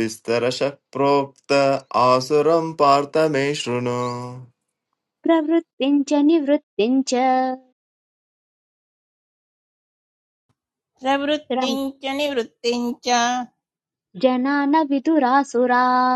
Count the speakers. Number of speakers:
three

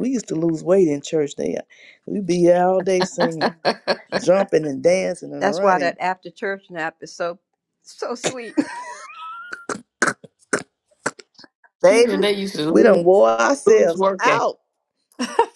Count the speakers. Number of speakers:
three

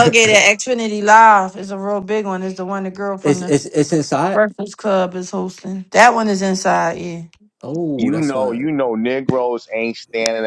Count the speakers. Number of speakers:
three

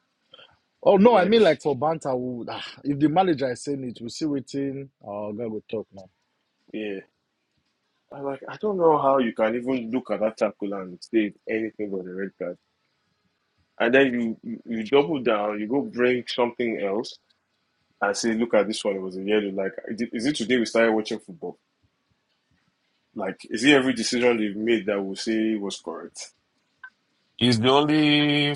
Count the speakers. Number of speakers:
three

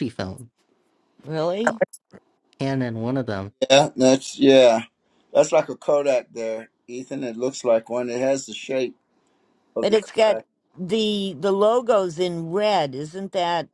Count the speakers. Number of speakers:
three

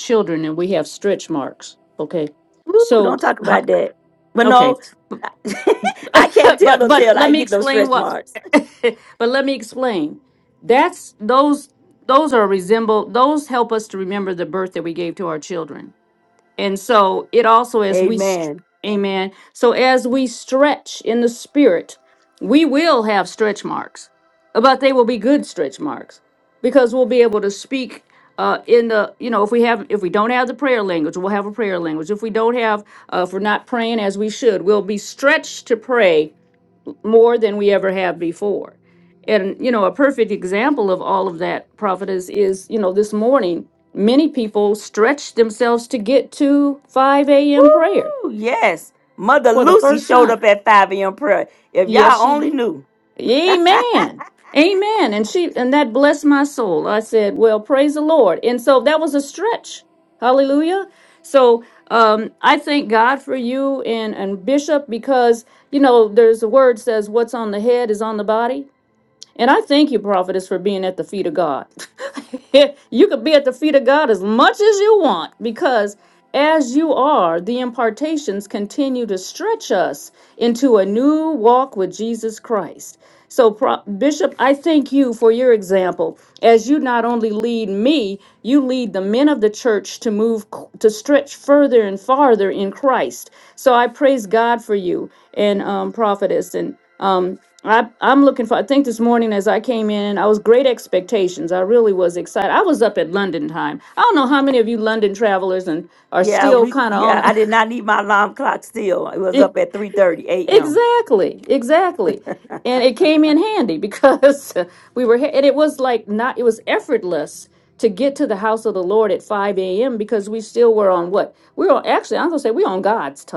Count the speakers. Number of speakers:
two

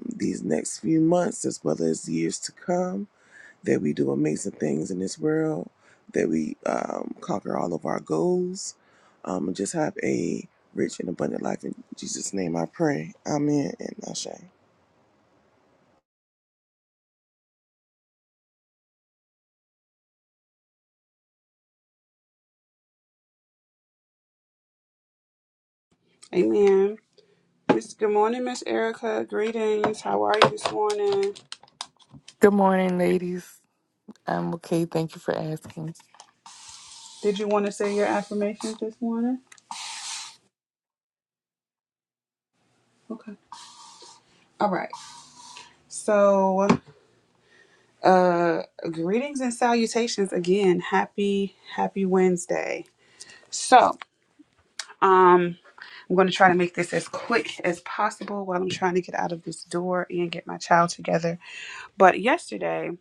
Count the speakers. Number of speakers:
three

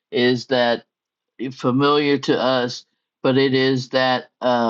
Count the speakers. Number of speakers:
one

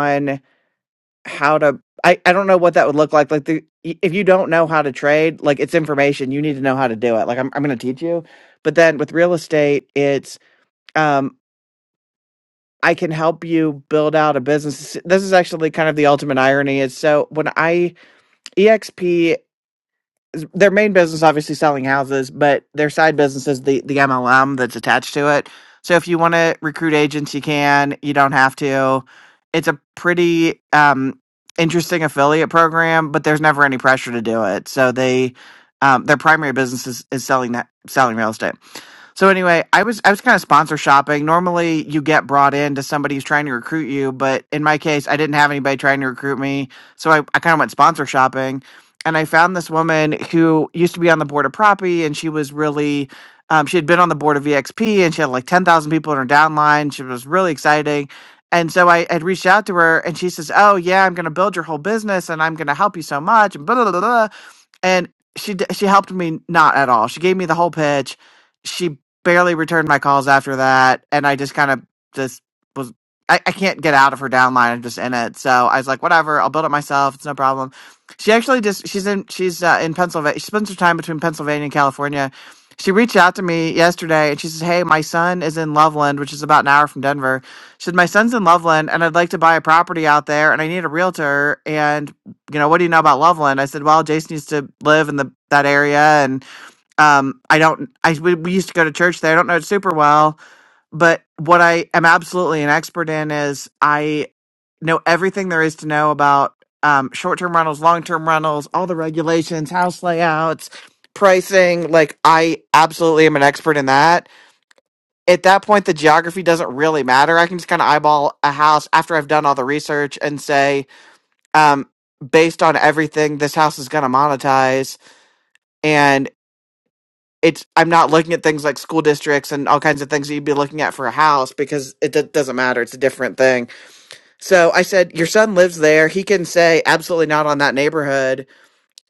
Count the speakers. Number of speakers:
one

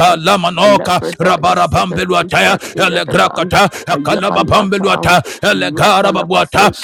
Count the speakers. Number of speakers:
two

